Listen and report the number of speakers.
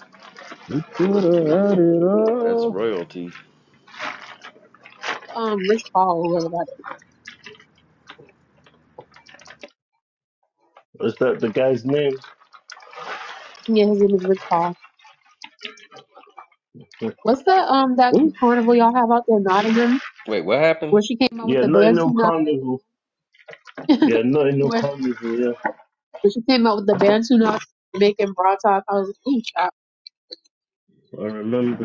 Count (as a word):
four